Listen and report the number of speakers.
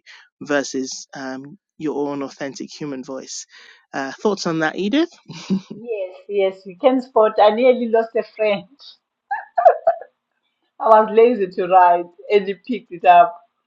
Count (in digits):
2